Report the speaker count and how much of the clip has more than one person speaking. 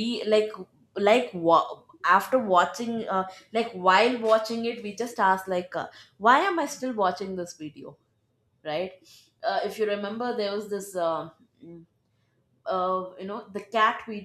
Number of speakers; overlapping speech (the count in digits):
1, no overlap